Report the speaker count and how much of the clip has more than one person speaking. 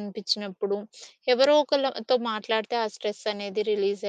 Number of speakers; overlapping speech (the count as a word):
one, no overlap